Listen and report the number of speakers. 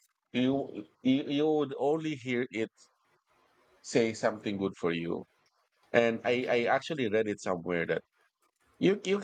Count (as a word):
one